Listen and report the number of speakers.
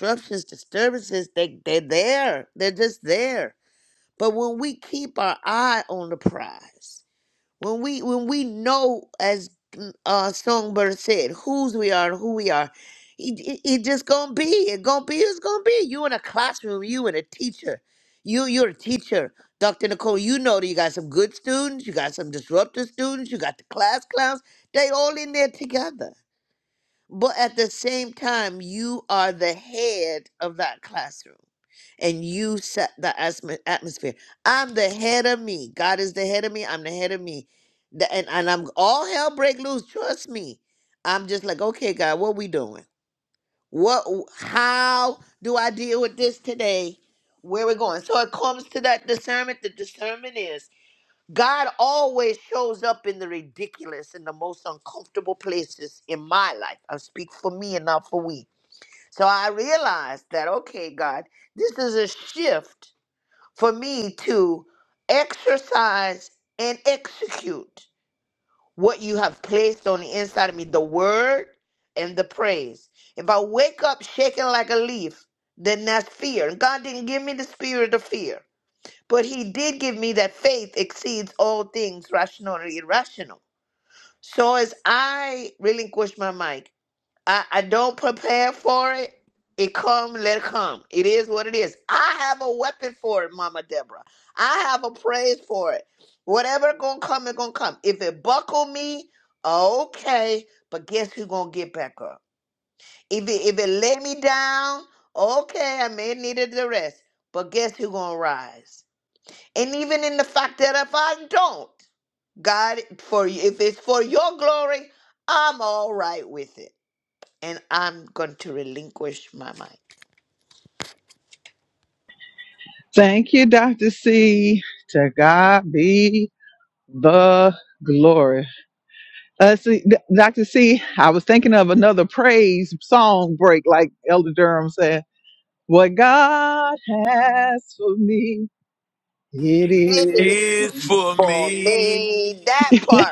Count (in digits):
3